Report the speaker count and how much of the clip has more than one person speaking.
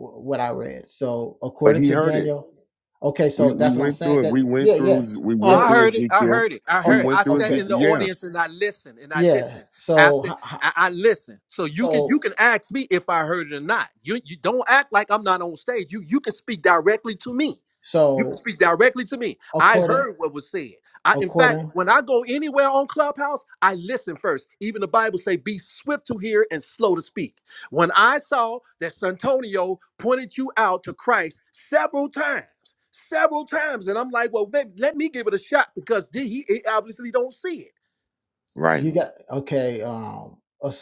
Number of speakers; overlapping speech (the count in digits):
3, about 18%